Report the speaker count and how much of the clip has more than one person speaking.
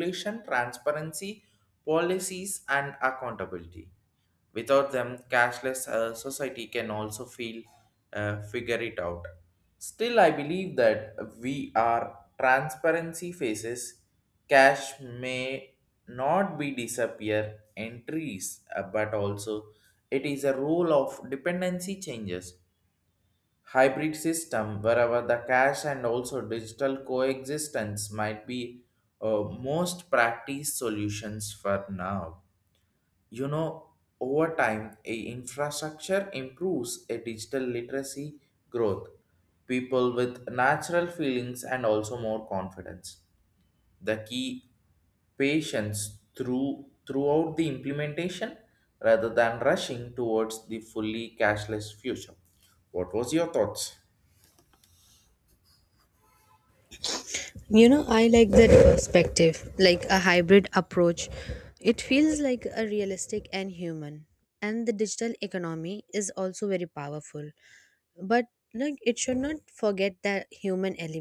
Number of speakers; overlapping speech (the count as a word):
two, no overlap